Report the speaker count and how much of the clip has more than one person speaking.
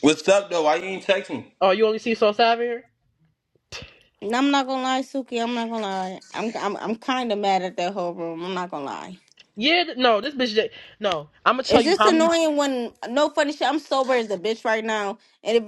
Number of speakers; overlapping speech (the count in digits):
3, about 4%